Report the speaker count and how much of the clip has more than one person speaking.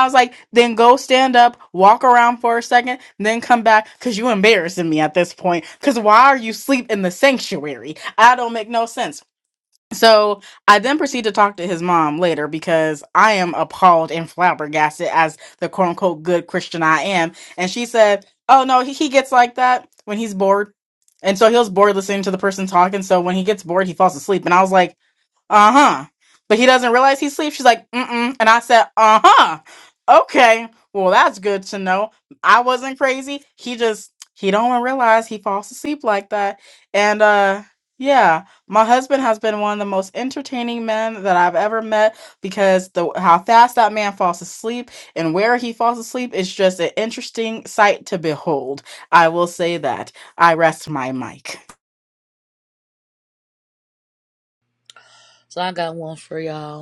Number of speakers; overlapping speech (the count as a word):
two, no overlap